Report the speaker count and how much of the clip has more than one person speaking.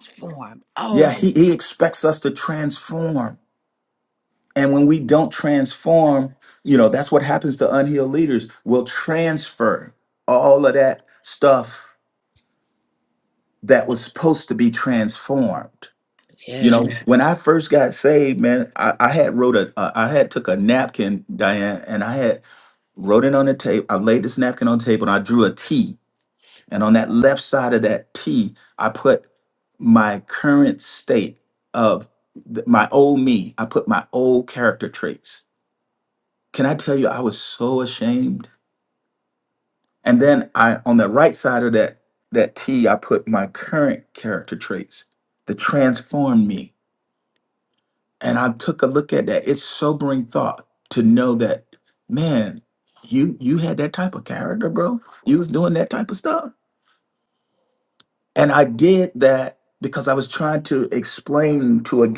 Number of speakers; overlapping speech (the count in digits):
2, about 1%